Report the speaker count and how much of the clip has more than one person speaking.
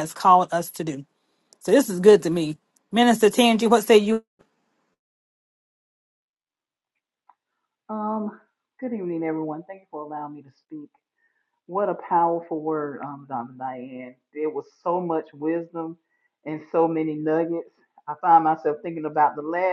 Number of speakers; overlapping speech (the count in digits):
2, no overlap